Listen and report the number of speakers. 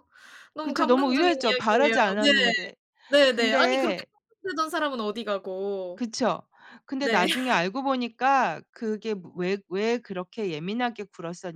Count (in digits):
2